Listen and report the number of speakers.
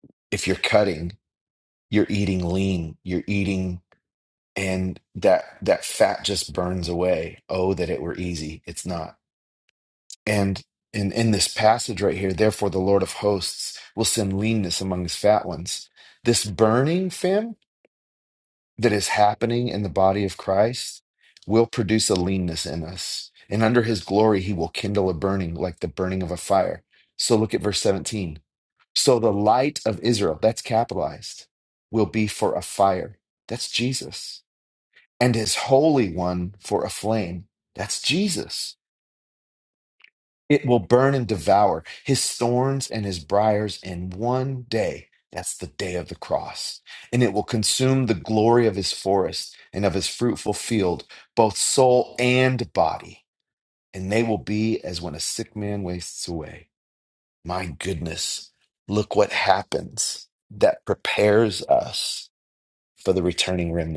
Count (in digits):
1